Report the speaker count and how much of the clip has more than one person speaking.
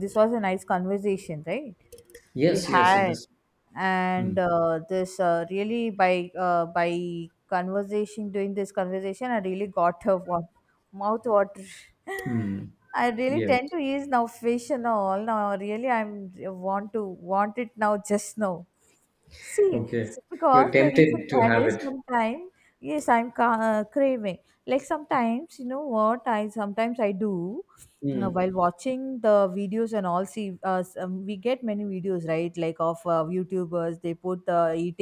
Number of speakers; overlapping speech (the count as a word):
two, about 8%